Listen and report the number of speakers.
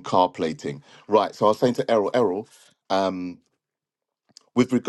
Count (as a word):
one